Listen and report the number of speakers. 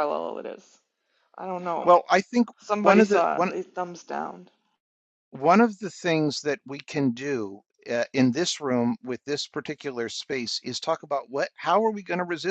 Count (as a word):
two